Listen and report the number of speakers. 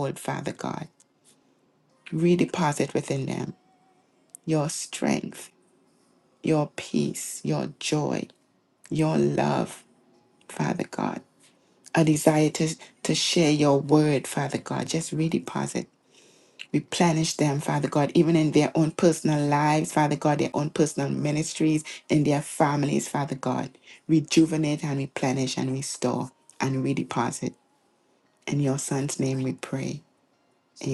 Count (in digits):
1